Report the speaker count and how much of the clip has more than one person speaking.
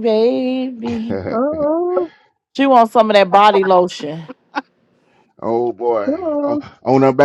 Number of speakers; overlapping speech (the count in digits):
3, about 7%